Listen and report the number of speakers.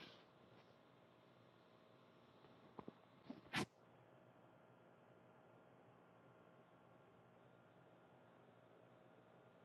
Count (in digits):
0